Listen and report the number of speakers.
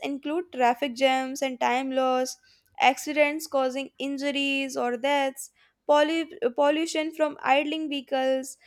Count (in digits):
1